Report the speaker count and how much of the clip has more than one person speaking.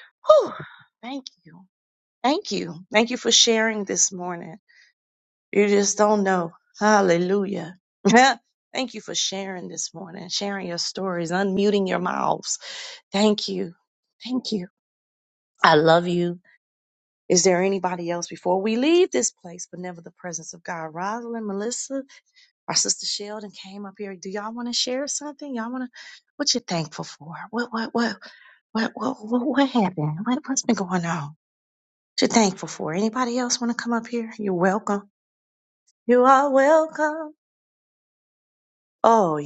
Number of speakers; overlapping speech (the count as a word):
one, no overlap